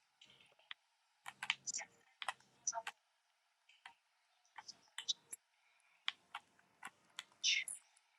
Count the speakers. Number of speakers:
0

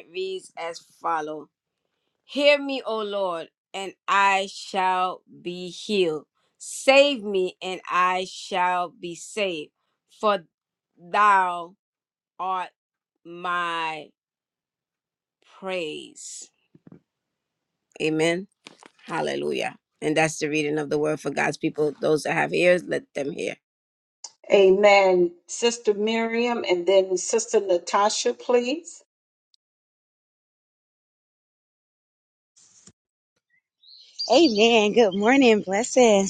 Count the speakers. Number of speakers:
3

